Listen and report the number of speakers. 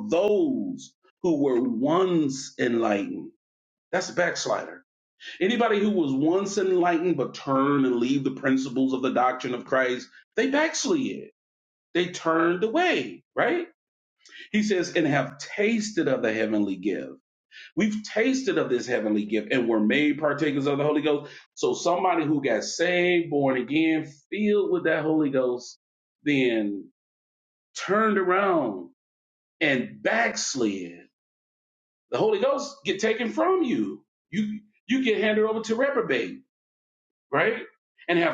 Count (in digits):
1